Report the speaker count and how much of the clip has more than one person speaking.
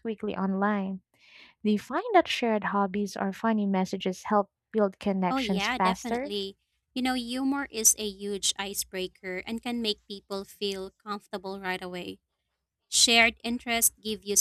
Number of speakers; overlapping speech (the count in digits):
2, about 7%